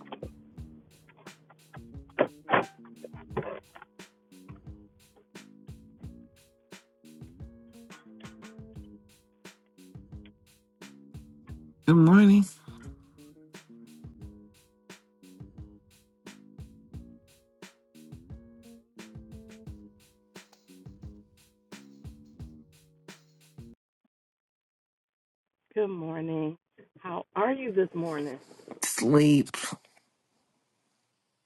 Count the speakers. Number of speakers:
2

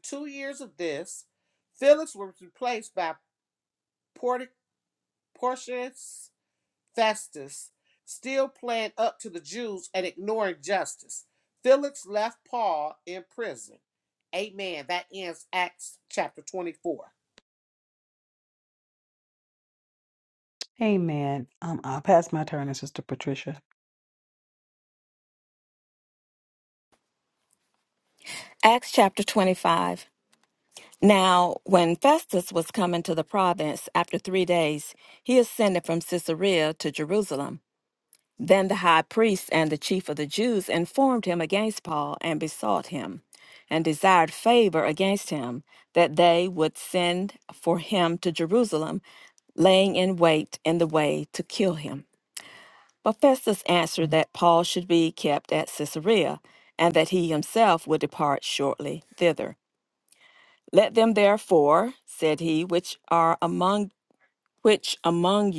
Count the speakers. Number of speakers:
3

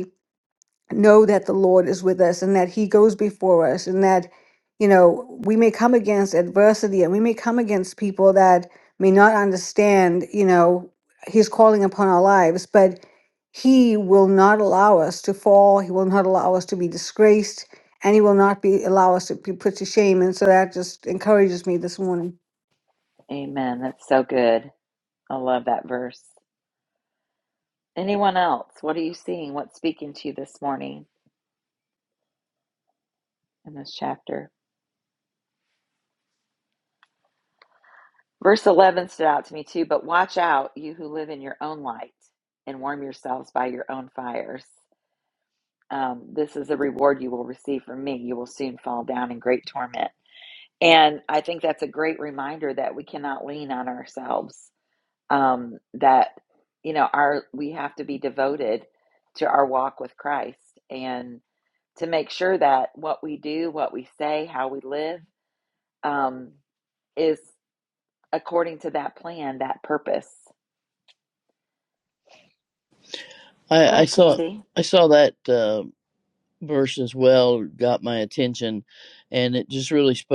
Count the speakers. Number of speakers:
3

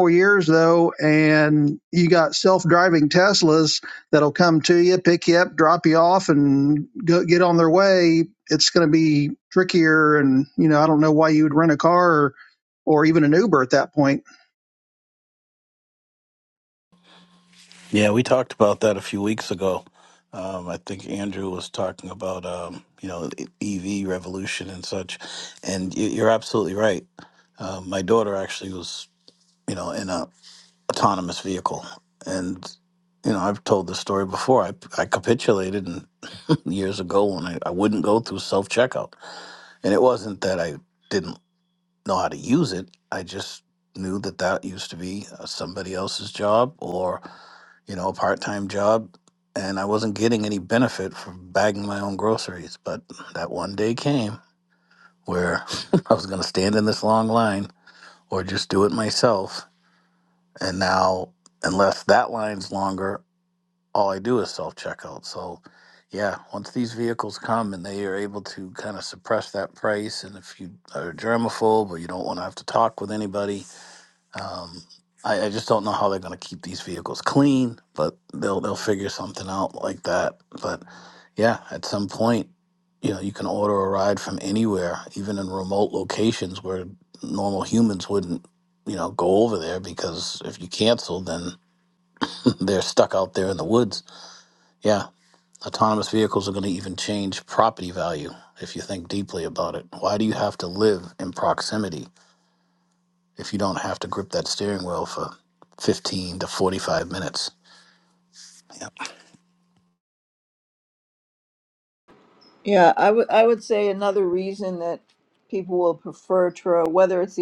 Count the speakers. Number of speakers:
3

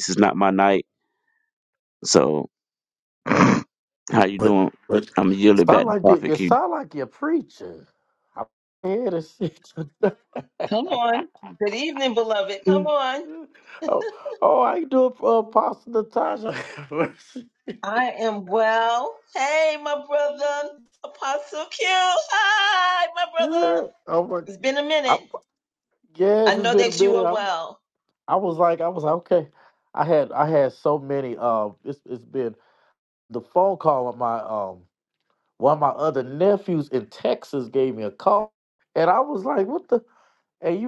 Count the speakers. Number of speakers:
3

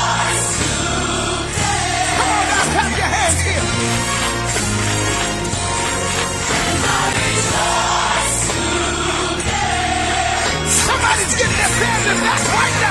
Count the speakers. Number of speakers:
0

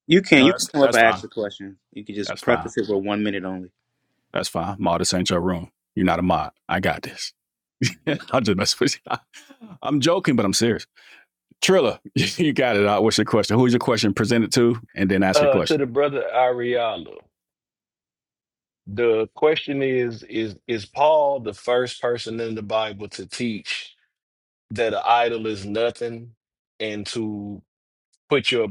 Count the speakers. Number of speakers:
3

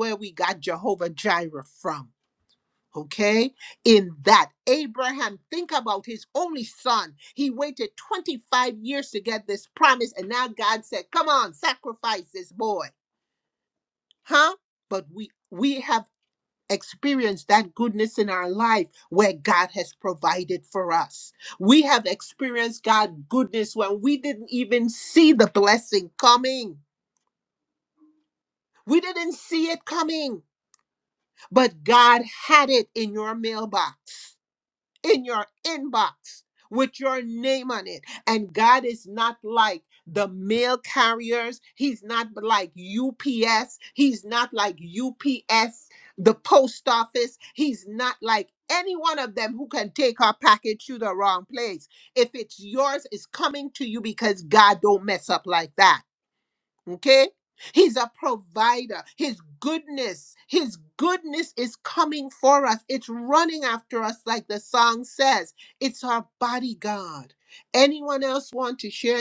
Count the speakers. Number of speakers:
1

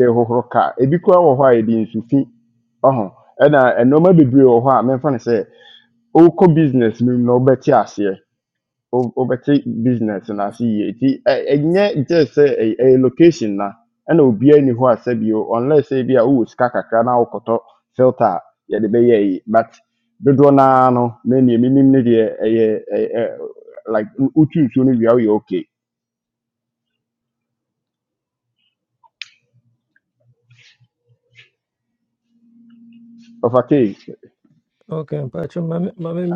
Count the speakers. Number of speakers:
2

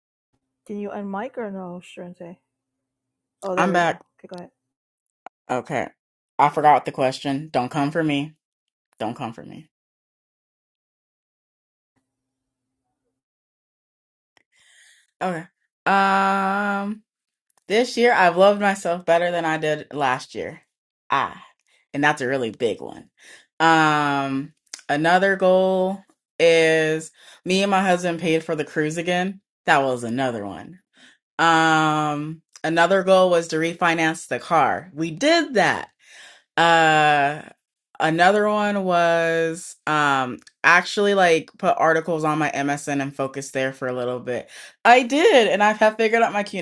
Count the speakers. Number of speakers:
2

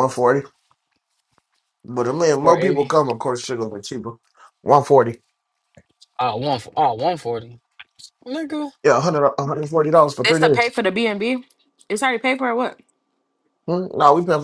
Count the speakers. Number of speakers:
3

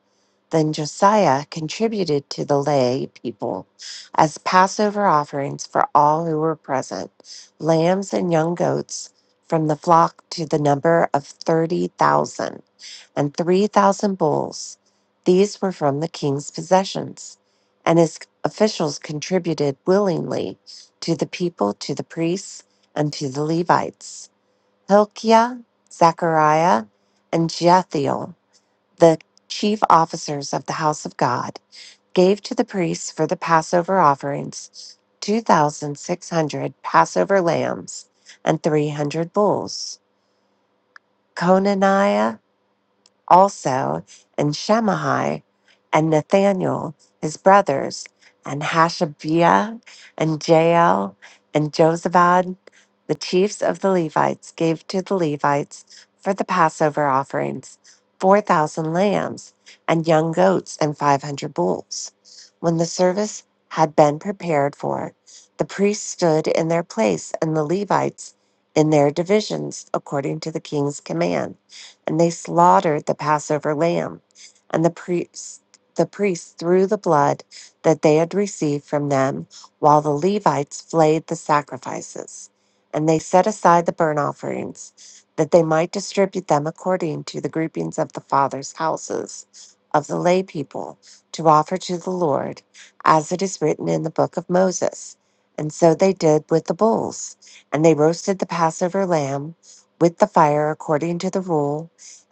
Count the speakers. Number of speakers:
1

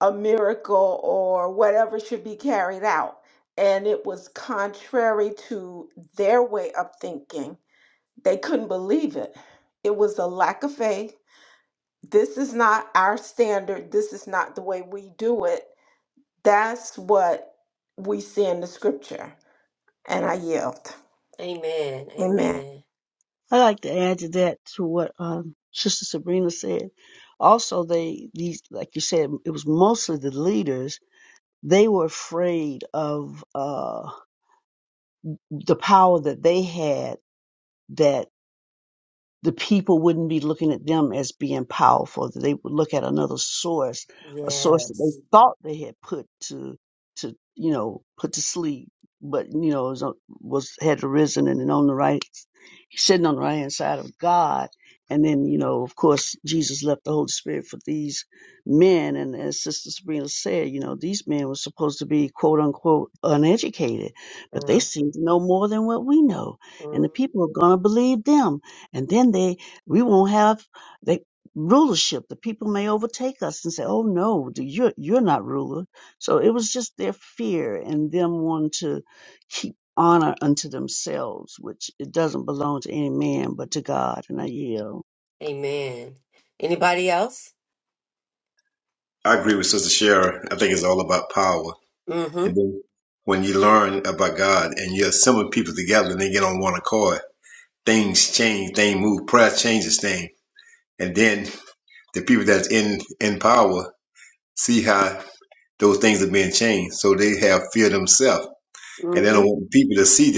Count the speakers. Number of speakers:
4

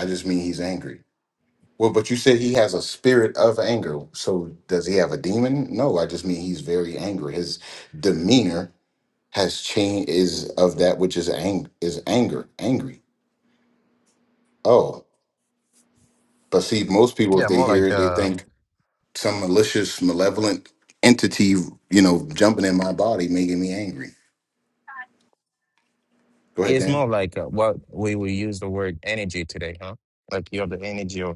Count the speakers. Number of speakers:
2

